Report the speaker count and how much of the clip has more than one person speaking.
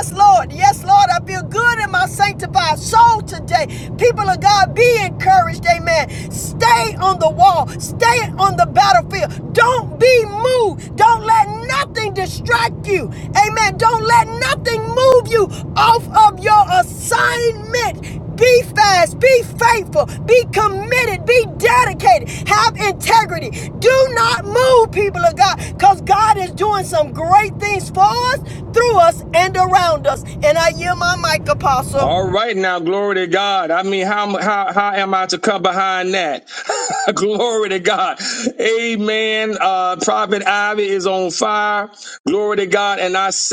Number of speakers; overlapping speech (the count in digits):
2, about 1%